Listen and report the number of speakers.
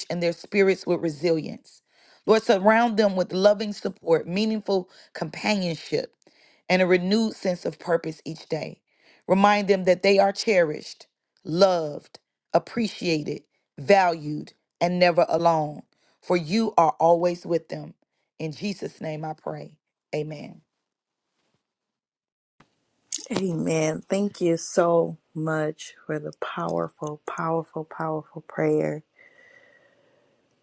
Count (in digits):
2